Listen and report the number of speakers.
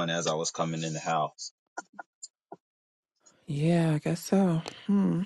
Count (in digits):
2